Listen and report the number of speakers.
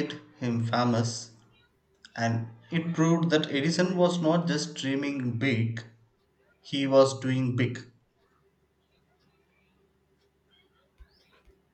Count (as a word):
one